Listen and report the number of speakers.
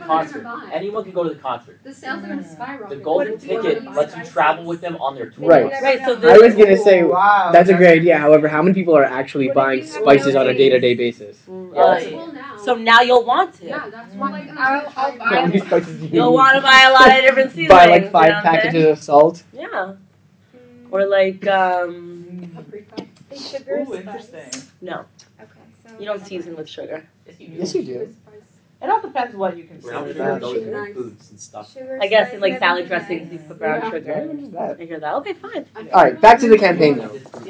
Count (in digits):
6